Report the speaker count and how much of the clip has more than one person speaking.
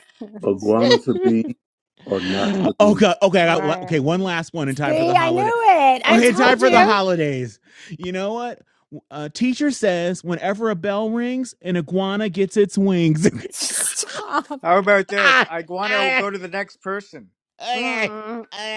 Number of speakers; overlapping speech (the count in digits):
4, about 20%